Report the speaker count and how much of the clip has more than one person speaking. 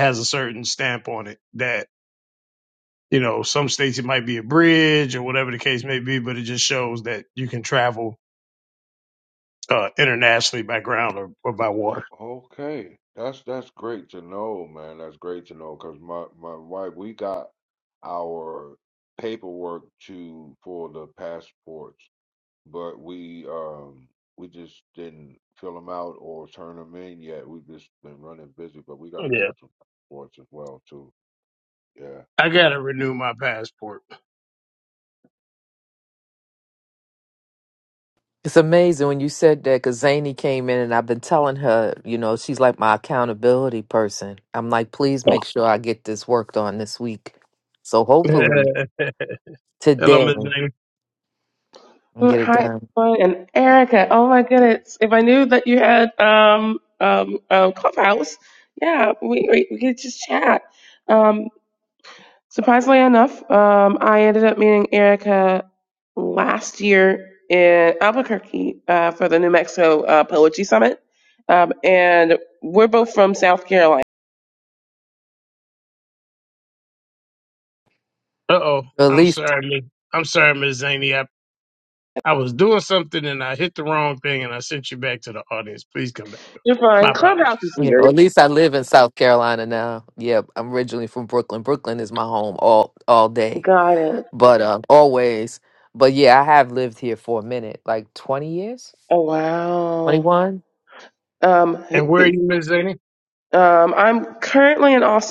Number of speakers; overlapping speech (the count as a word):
four, about 4%